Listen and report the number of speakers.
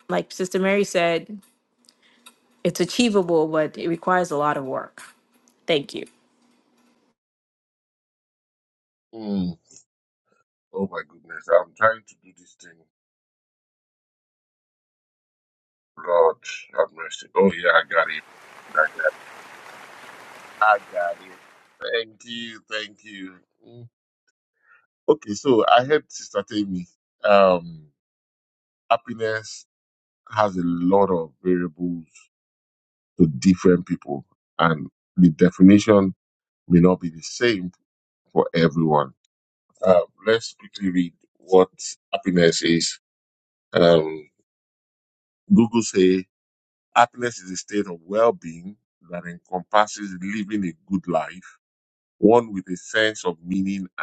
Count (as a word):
two